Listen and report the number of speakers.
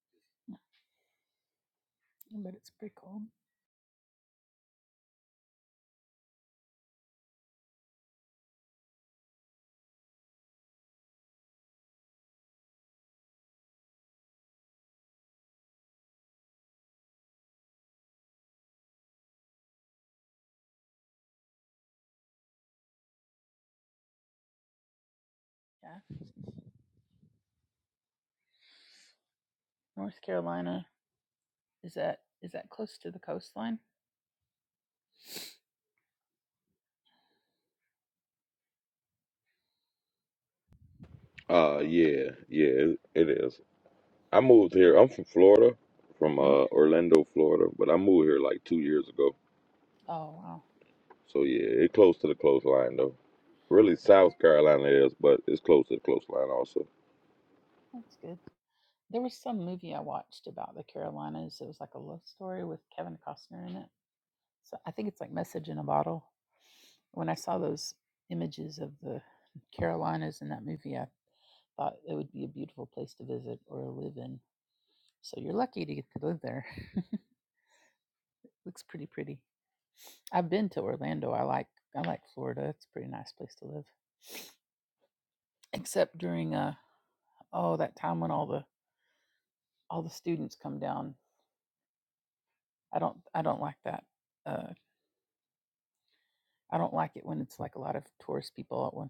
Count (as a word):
two